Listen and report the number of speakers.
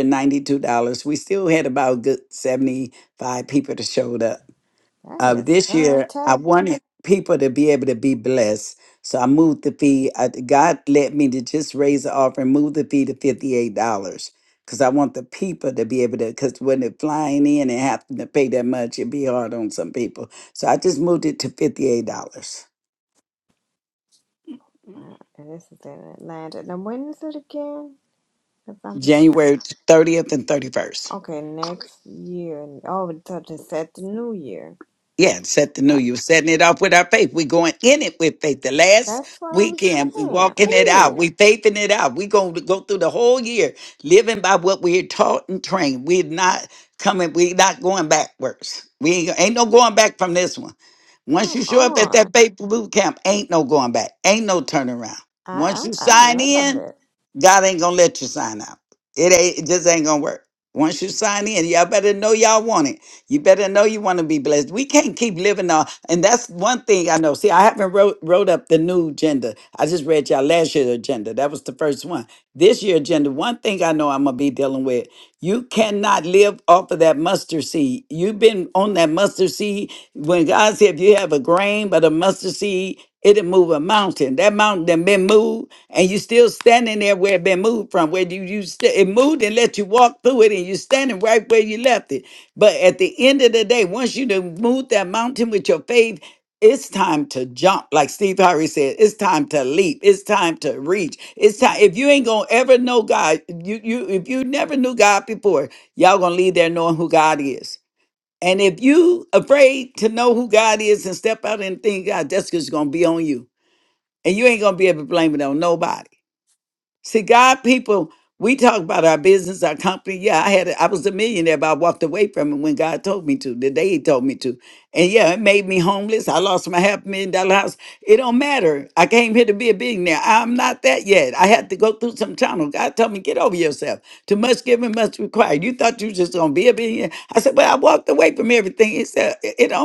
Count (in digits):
2